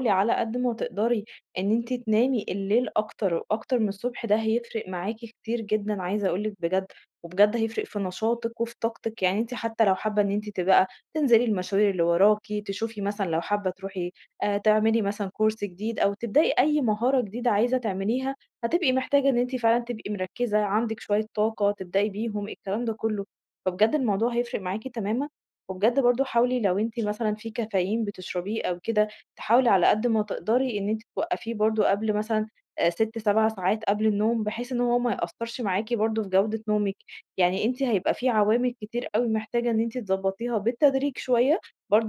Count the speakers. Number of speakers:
one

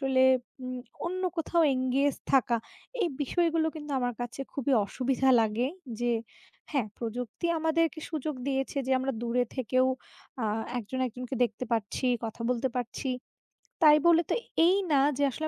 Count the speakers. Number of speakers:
one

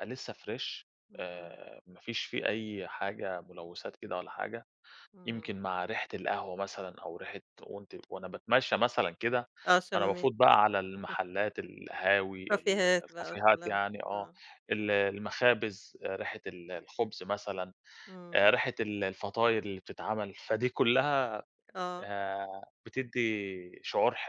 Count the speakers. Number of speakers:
two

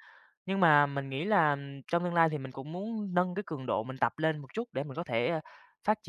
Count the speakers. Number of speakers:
one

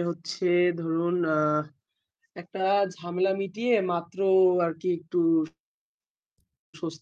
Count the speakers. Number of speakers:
one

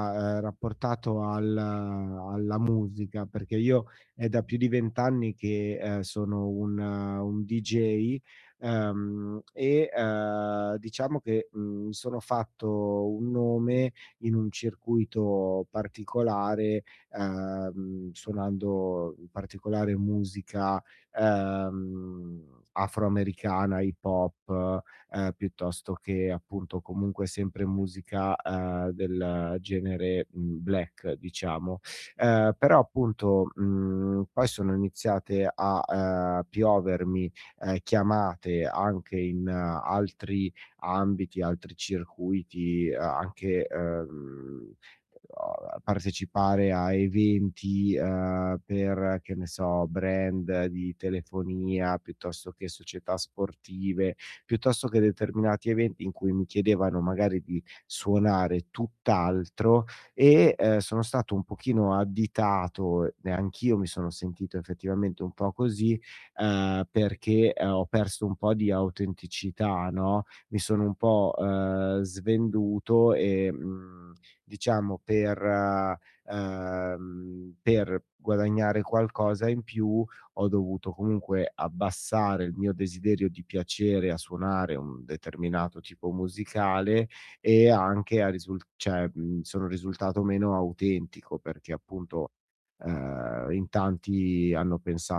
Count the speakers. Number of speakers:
one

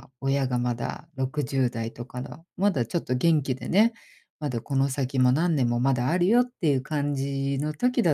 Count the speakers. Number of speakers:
one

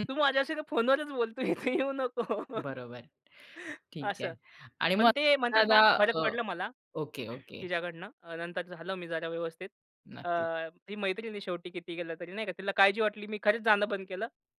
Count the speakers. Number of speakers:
two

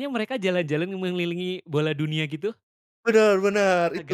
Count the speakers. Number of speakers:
two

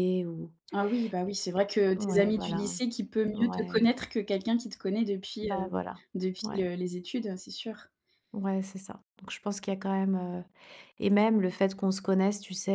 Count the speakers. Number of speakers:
two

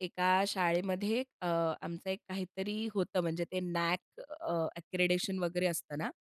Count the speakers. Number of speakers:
one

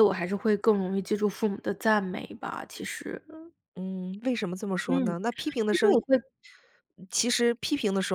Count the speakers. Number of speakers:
two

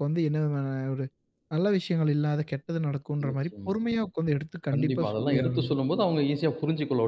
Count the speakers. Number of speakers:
two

